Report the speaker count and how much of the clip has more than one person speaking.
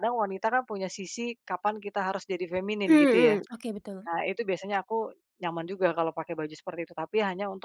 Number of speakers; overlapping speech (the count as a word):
two, about 7%